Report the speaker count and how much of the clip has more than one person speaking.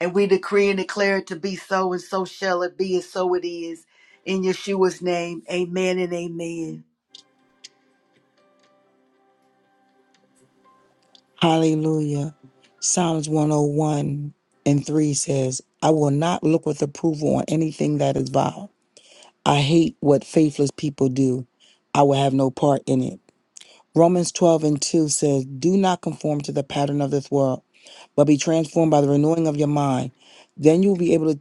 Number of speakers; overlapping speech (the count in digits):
2, no overlap